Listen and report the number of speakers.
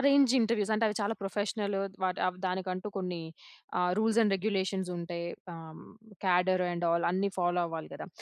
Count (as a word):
one